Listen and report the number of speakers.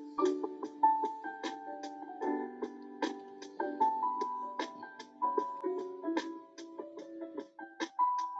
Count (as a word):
zero